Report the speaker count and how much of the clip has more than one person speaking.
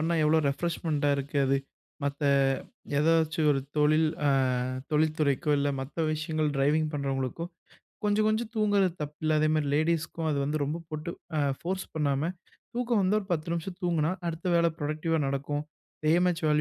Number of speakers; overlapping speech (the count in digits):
1, no overlap